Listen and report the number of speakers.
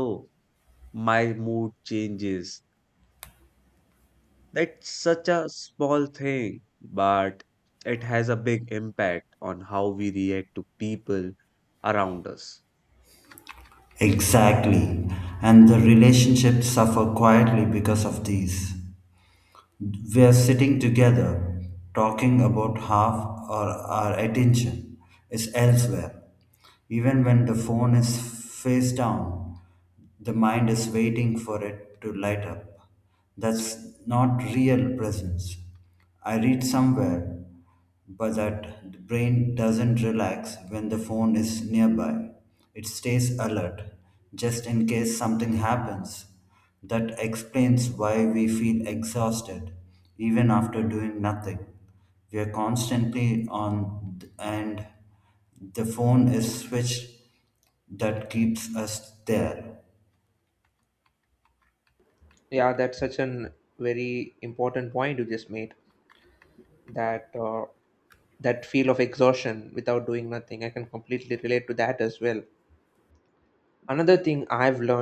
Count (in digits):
3